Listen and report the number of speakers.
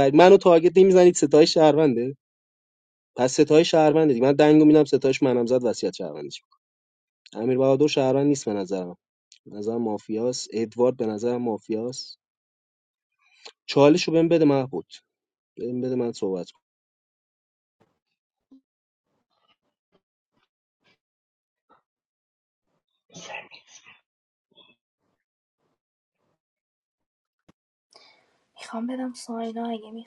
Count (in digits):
2